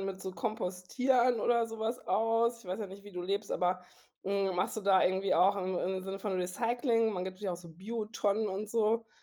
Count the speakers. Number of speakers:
one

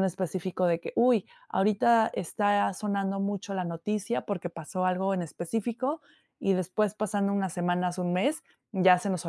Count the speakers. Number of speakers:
one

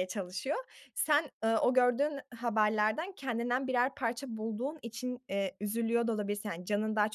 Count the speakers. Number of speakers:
one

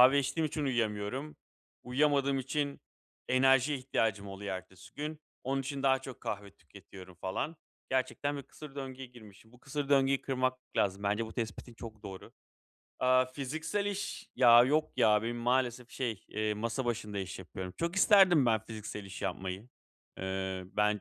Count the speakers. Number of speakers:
one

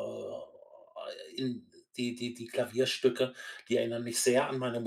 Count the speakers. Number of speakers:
one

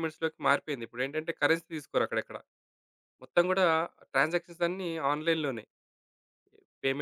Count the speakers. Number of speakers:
one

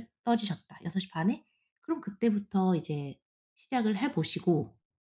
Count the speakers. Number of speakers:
one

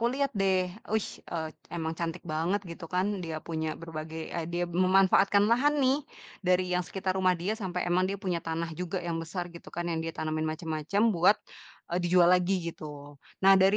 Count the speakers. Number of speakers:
one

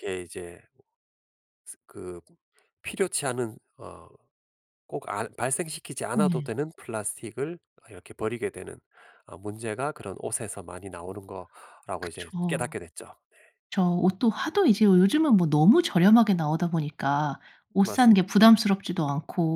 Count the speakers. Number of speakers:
two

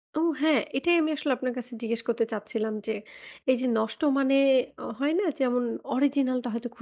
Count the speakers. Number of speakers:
one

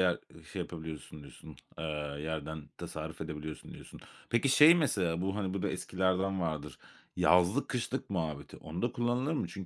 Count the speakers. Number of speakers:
one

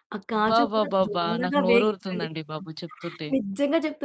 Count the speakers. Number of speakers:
two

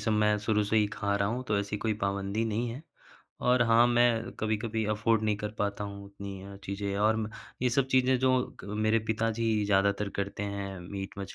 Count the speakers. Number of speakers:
one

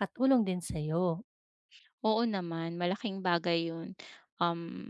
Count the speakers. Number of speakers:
two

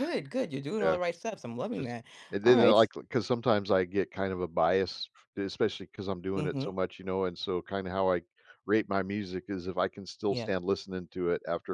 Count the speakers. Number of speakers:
two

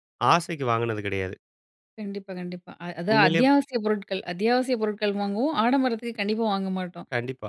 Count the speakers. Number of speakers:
two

